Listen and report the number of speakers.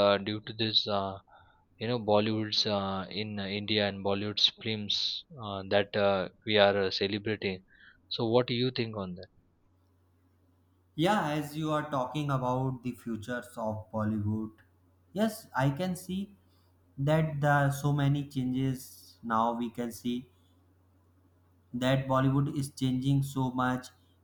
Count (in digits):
2